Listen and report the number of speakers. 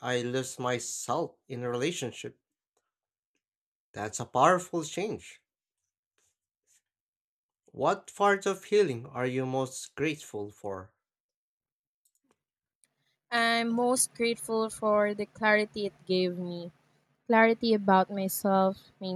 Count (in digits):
2